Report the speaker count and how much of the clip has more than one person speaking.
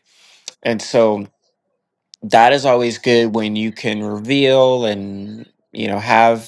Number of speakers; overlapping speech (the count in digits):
1, no overlap